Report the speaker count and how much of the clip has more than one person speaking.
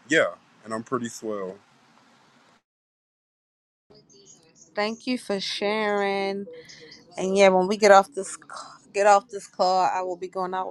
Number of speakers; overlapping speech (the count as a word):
two, no overlap